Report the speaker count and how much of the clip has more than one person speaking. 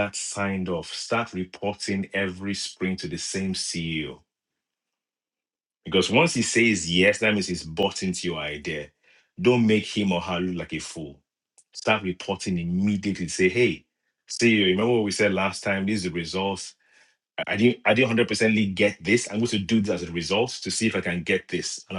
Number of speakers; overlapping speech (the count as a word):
one, no overlap